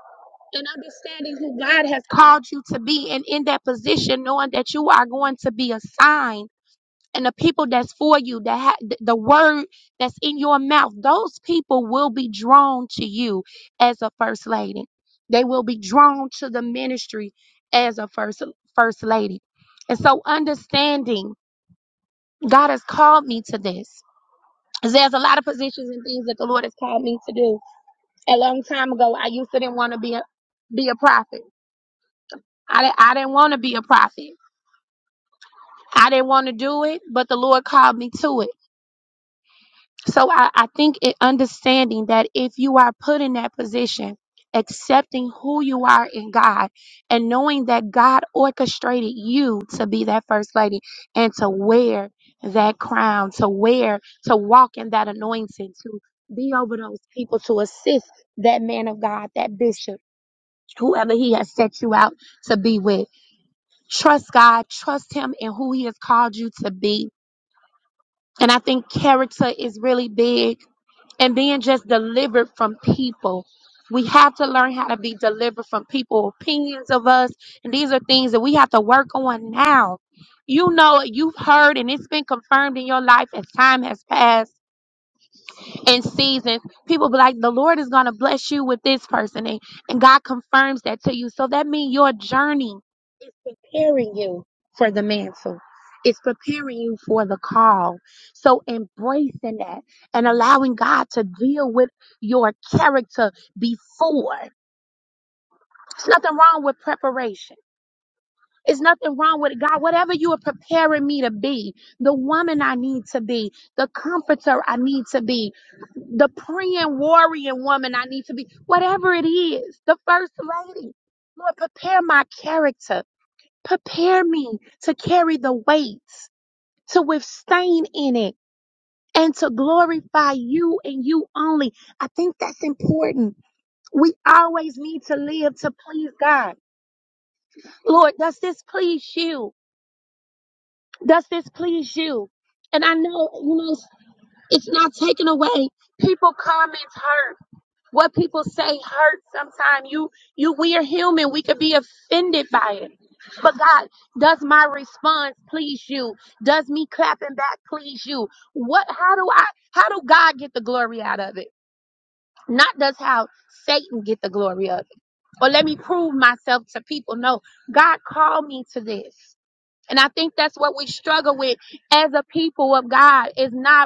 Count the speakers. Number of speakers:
1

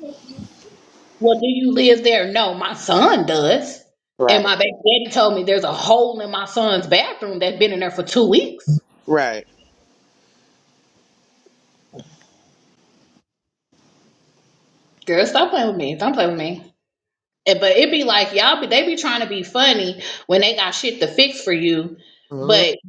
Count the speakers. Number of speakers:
2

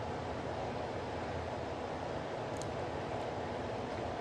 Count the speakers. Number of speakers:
0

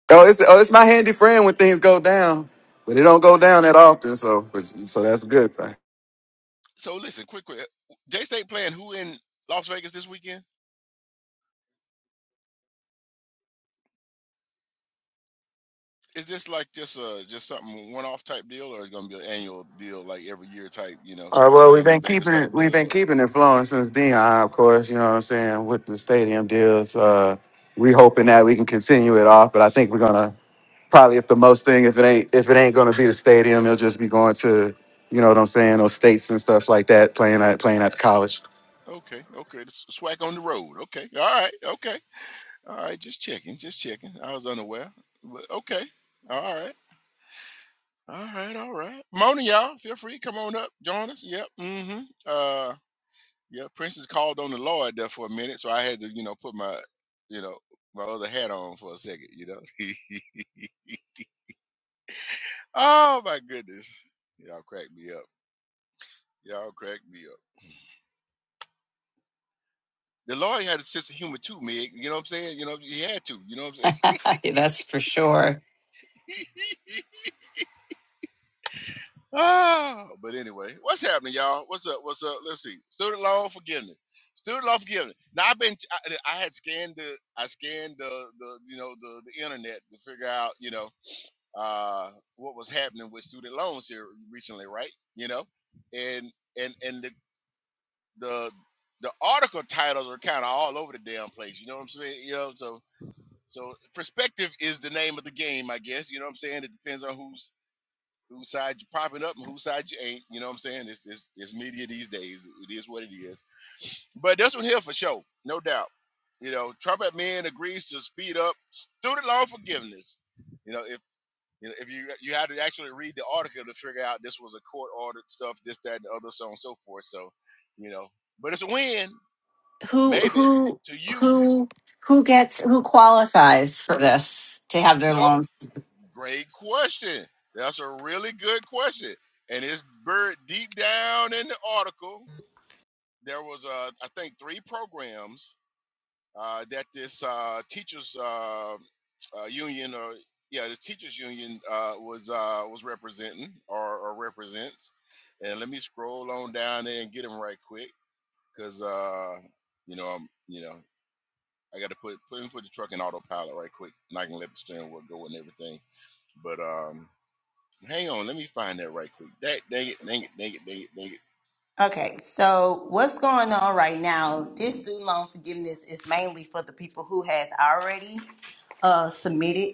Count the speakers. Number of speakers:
4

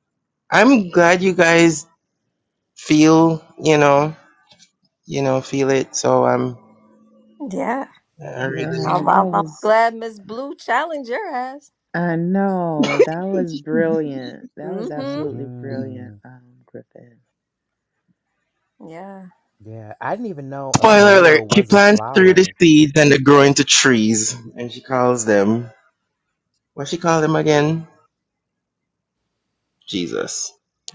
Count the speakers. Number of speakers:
4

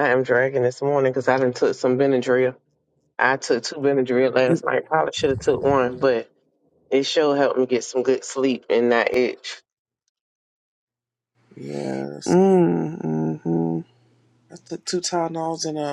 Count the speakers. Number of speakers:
3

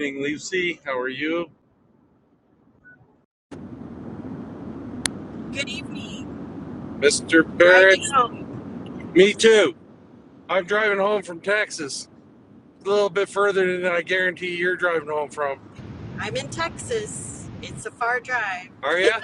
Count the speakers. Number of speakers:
2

